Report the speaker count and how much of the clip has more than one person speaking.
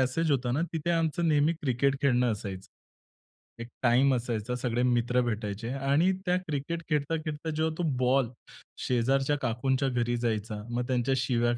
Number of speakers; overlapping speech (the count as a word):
one, no overlap